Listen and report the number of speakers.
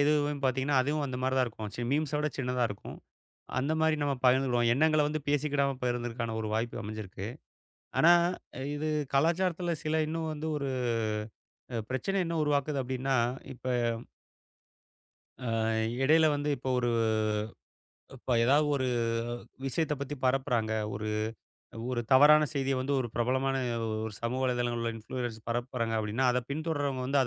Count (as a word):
one